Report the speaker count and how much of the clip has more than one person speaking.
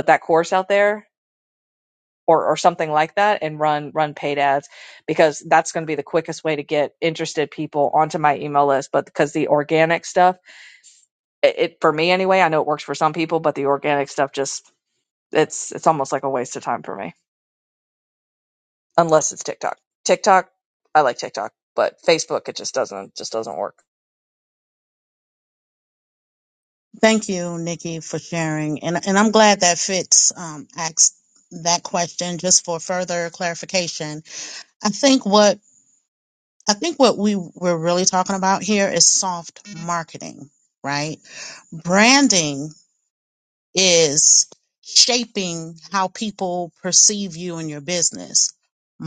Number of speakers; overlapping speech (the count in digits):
2, no overlap